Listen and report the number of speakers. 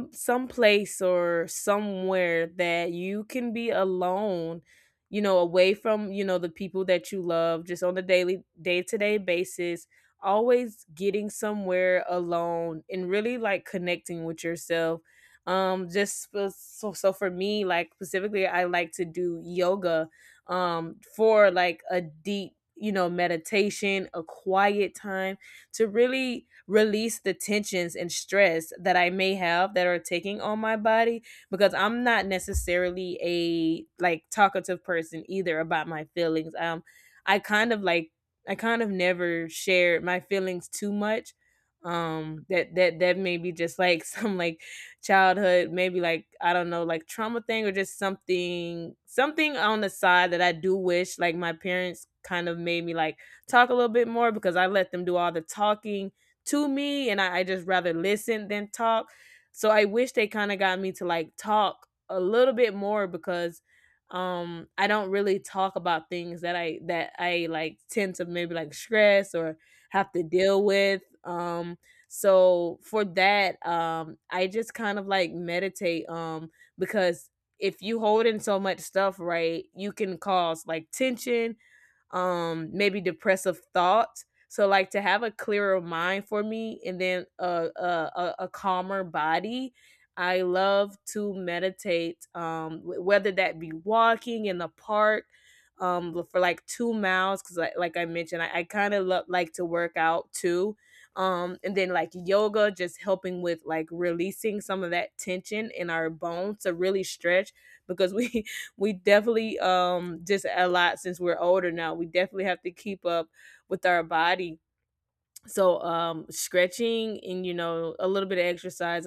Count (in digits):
1